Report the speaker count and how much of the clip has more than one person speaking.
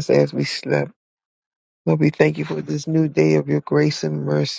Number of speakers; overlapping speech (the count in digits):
1, no overlap